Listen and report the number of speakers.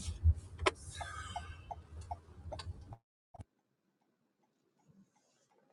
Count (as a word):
zero